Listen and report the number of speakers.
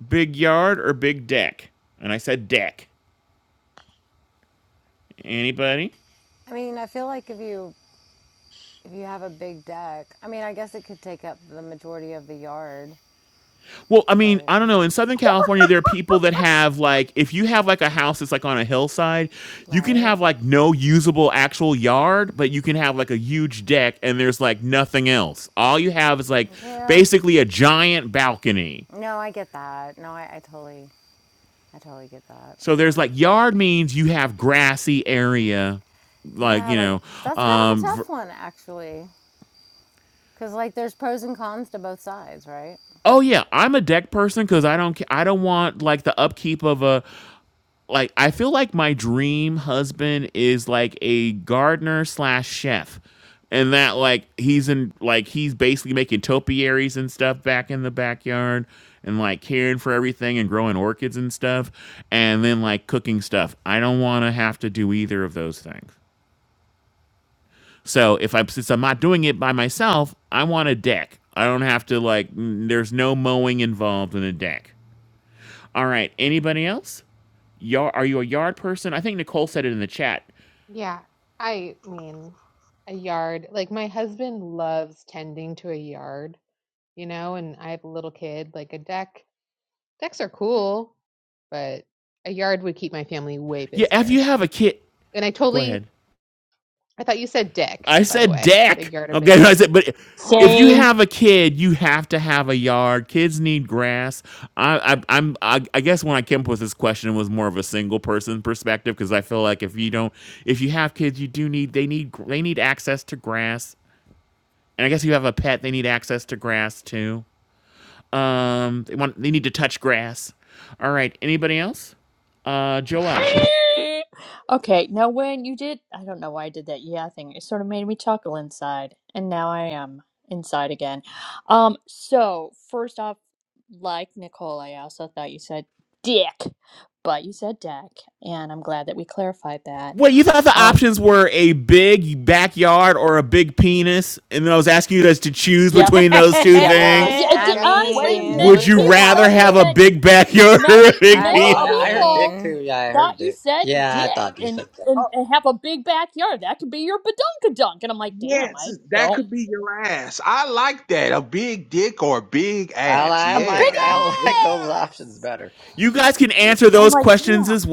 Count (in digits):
6